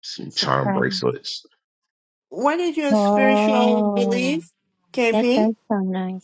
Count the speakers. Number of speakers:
three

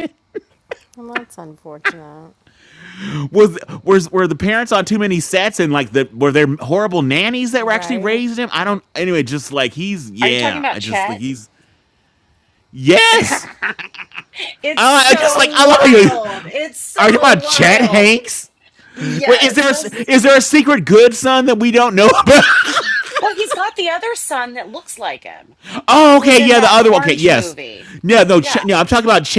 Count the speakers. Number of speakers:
three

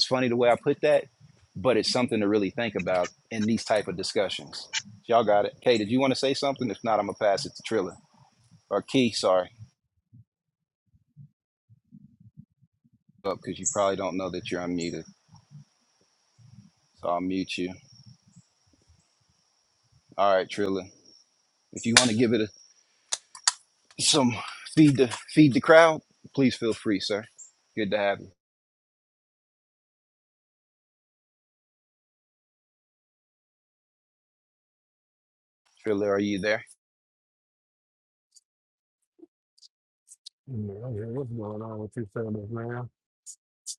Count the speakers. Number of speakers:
two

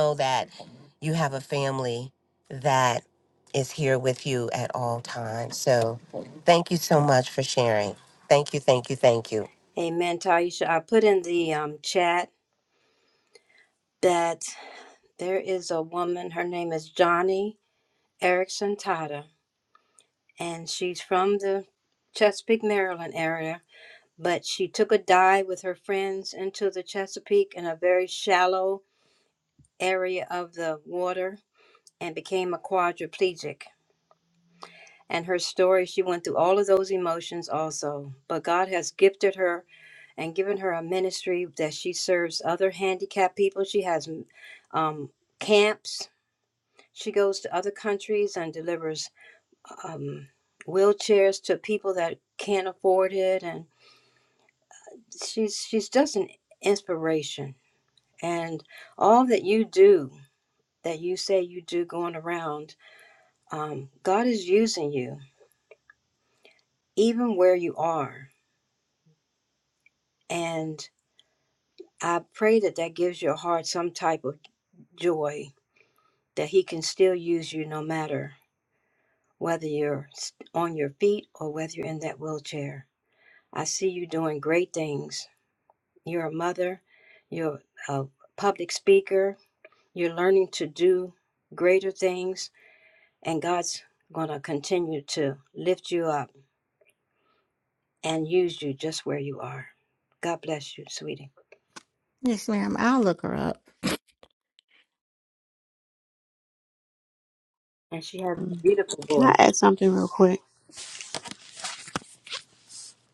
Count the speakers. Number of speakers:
four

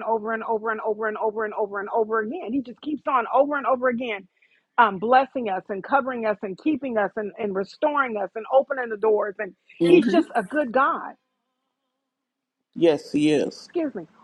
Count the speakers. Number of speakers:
two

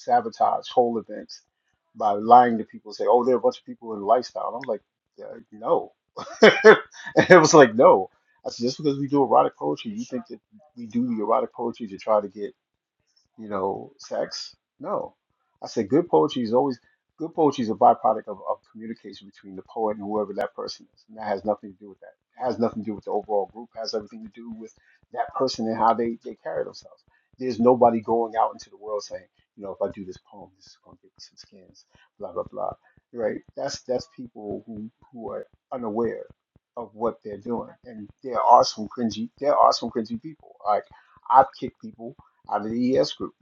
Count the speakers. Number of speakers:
one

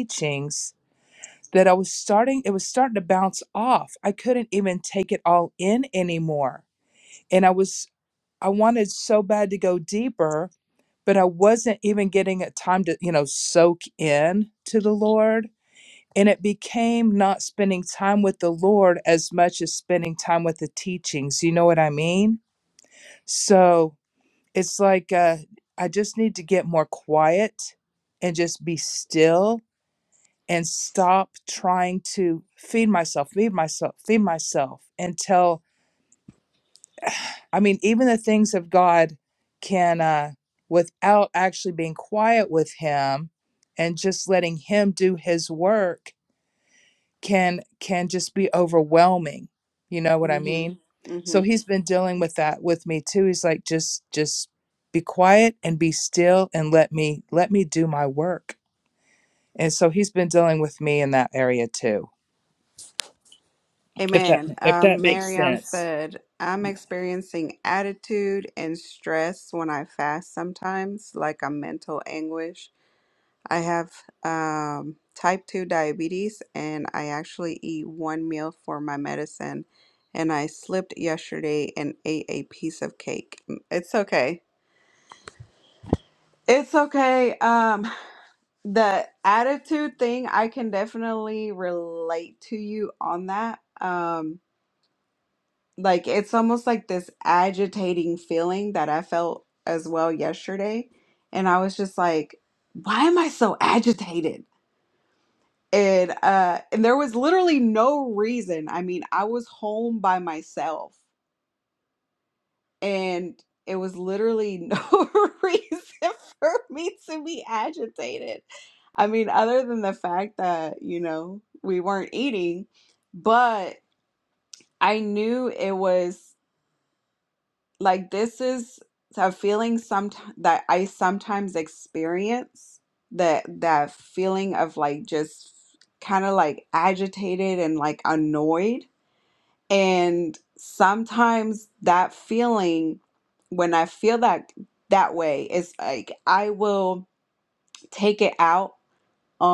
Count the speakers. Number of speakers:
two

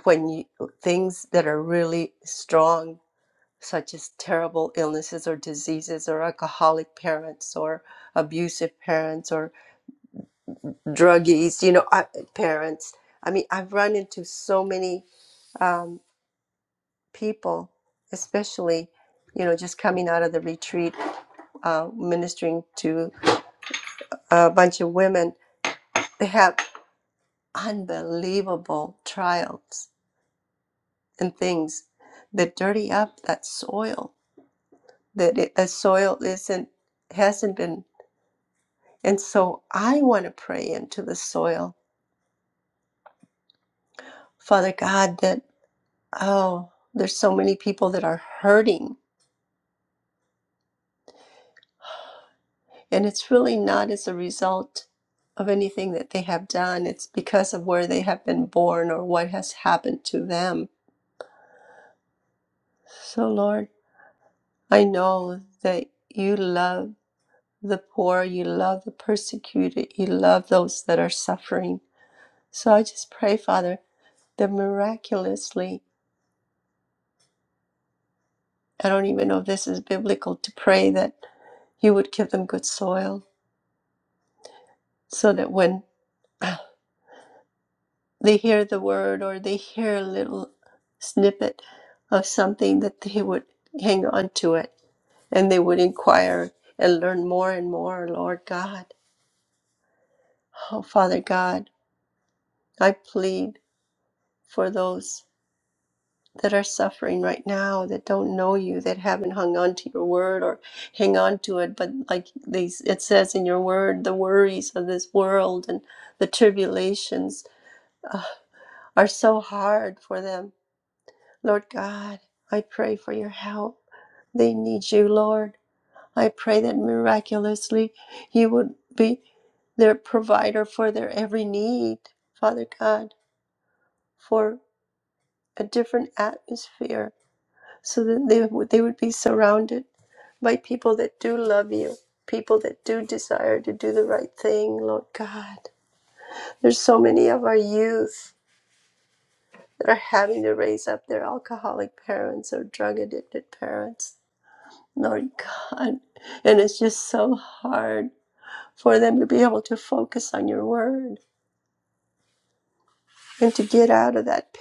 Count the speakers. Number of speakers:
one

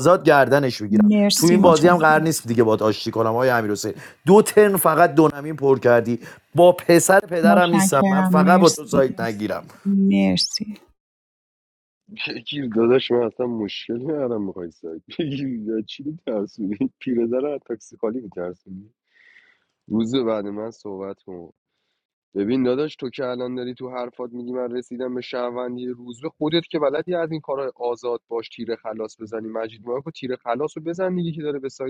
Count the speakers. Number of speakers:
three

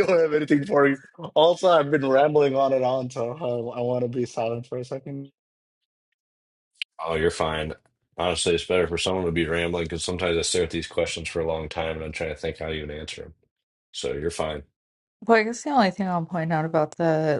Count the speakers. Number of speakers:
three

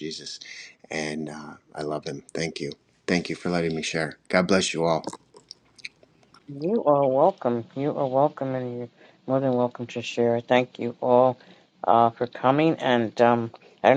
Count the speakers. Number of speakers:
two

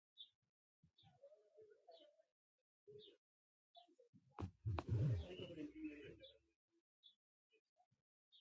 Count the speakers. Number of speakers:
zero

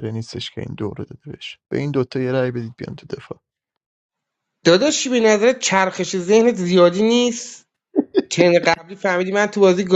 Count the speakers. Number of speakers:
two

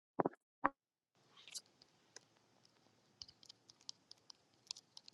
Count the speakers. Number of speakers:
zero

